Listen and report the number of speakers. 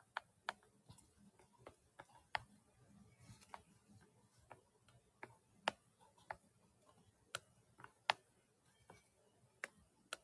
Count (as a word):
zero